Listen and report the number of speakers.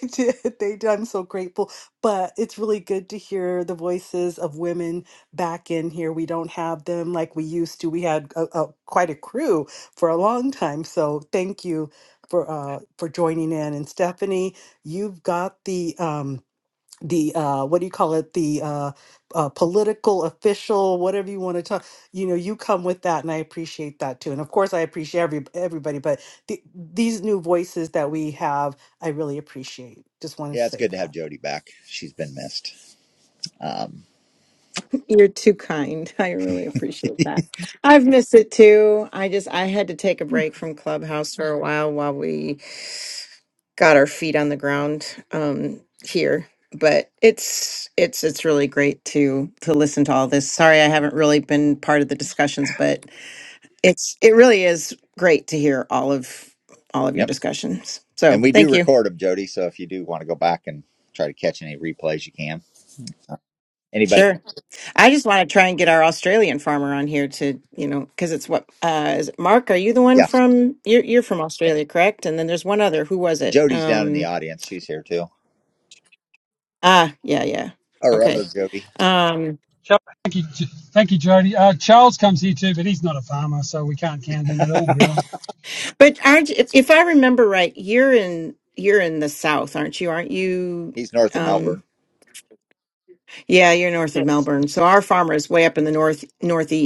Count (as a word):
four